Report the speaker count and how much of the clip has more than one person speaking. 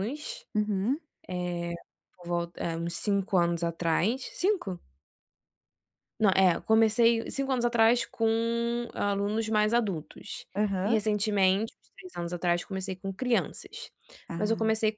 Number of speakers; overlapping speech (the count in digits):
2, about 3%